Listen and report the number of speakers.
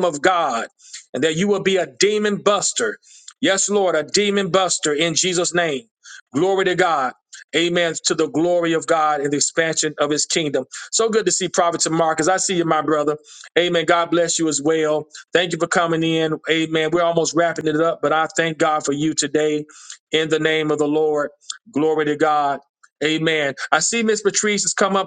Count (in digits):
1